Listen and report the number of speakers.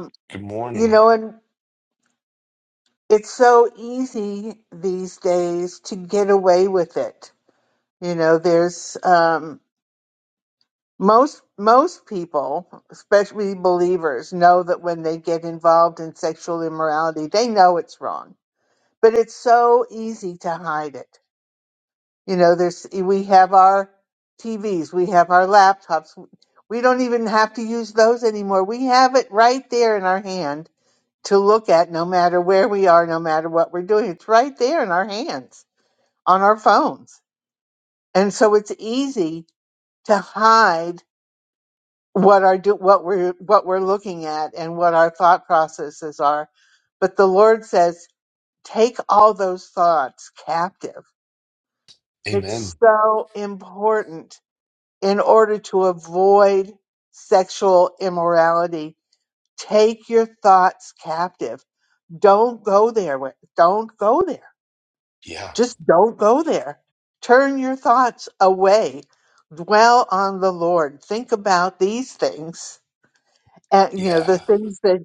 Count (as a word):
two